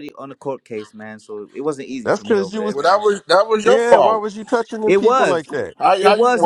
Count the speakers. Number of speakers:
3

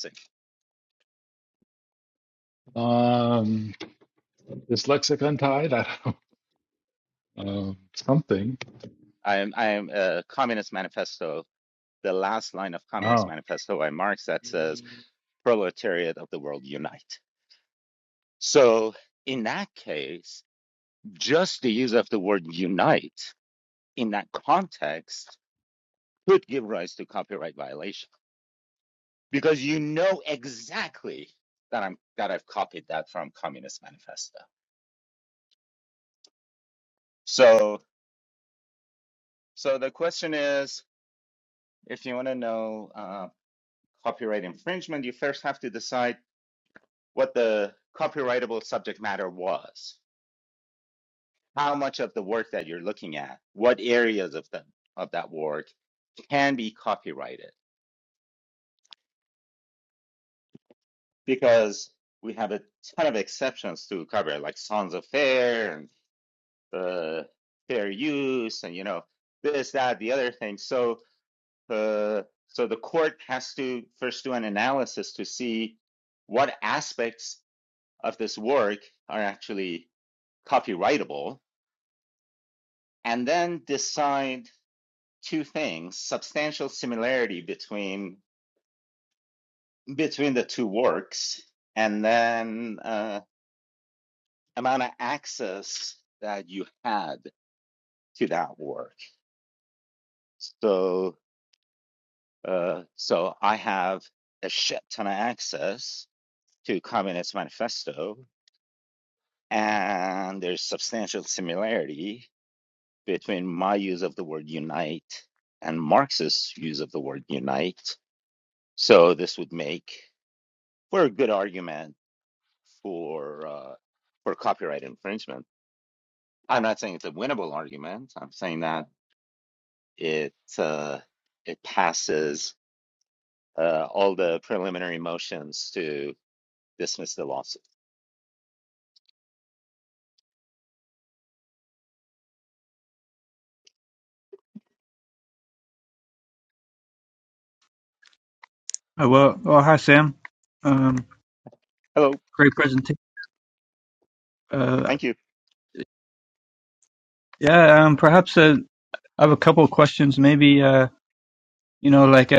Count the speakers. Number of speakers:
3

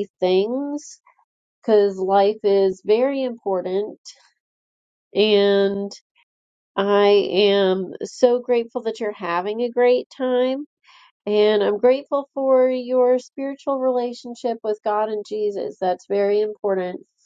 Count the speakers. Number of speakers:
1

